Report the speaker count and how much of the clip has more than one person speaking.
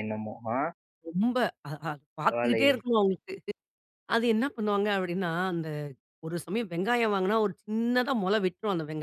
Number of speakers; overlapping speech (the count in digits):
2, about 6%